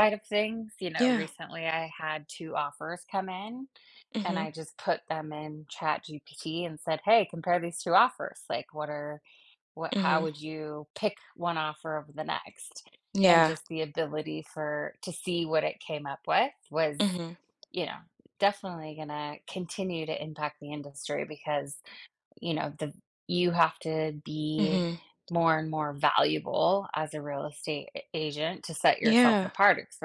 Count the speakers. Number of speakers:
2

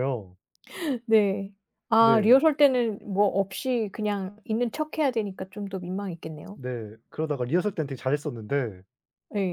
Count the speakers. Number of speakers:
2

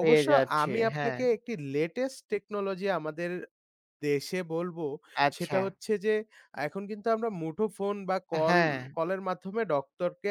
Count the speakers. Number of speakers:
2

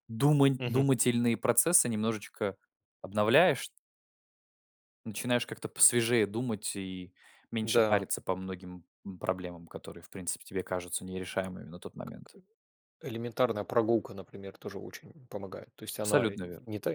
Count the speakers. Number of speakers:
2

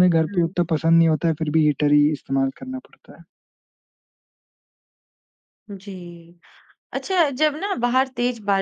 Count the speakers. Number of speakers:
2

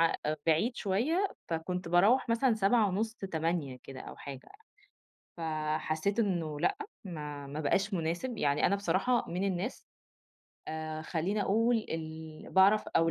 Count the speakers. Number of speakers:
1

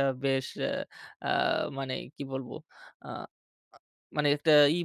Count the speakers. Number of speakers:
1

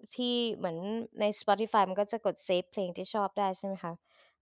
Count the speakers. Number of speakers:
1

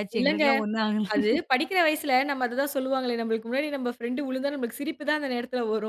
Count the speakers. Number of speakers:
2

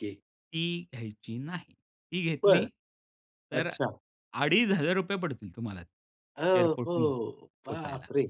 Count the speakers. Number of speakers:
2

